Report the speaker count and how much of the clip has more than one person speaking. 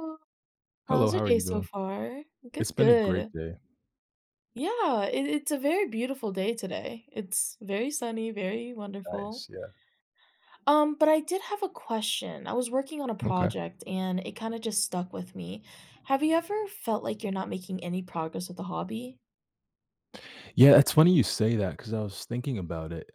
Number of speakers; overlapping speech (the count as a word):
two, about 9%